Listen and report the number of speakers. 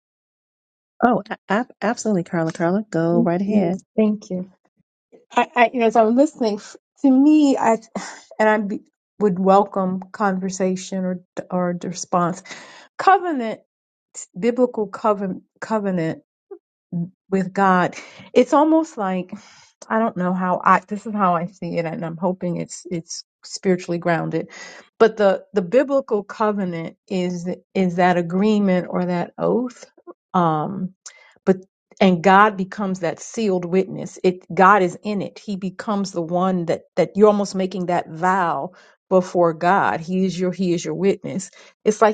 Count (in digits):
2